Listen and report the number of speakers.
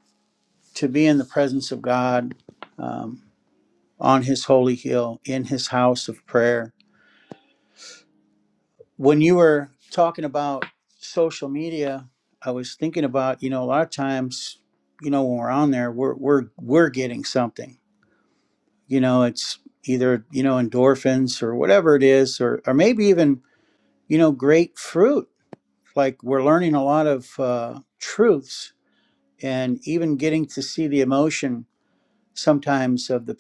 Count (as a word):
one